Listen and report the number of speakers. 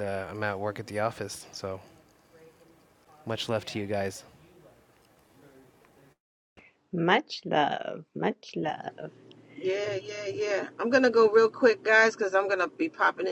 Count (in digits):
3